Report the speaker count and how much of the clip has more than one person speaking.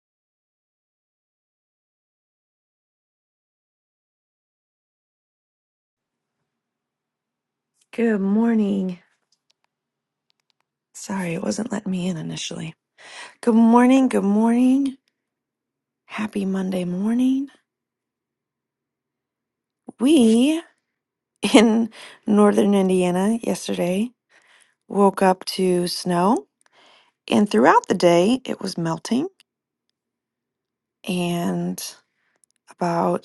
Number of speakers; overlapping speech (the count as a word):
one, no overlap